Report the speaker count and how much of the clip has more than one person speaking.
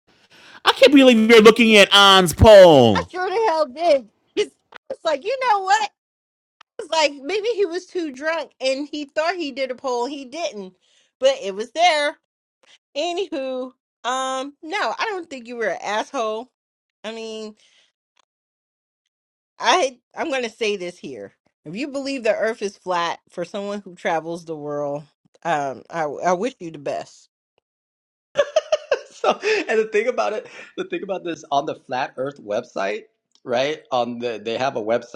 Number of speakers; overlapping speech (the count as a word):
three, under 1%